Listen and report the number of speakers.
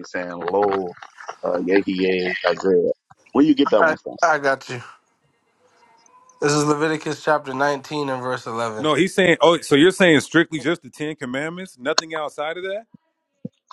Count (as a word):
three